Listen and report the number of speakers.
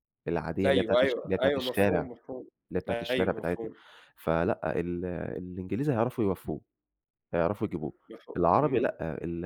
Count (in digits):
2